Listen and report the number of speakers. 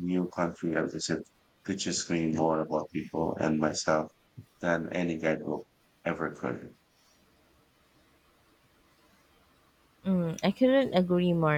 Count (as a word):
two